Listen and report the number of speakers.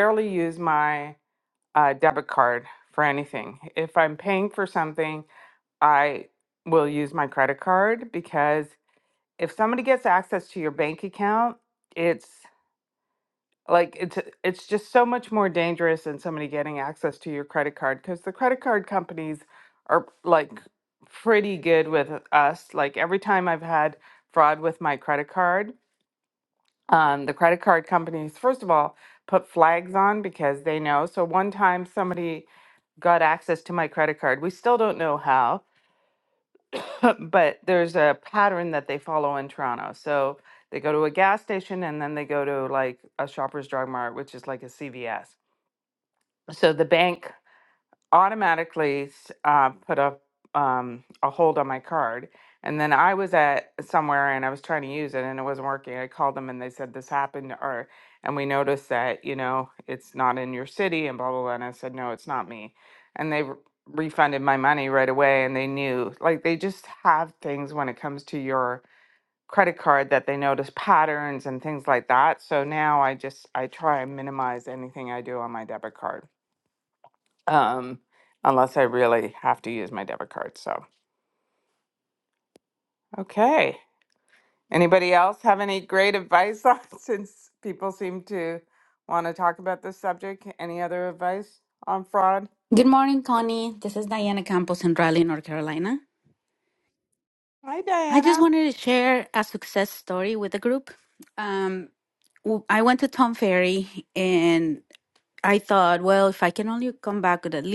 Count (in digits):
2